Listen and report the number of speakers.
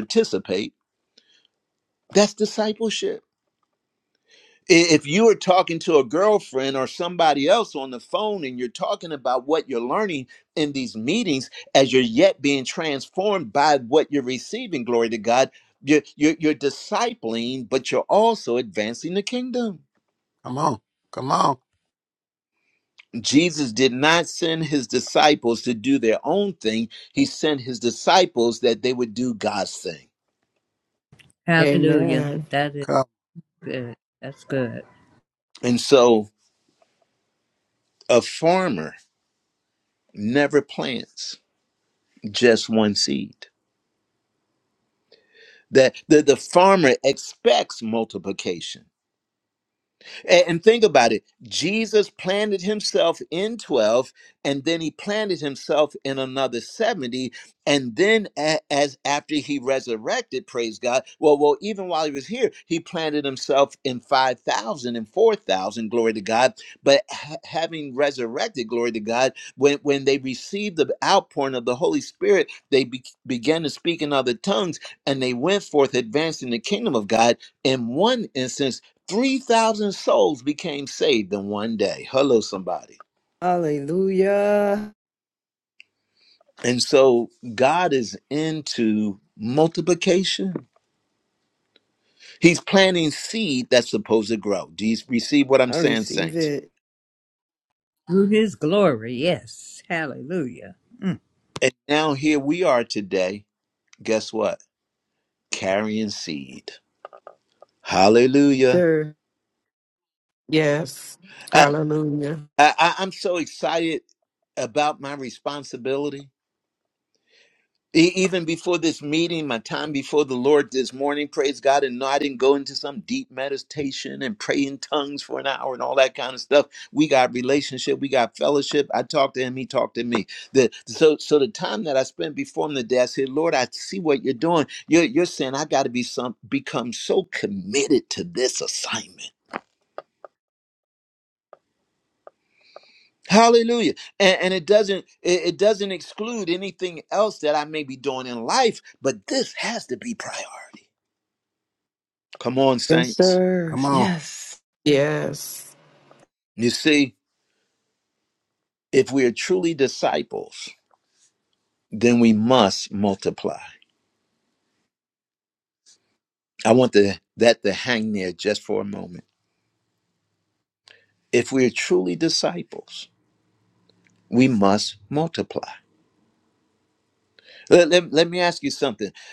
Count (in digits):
5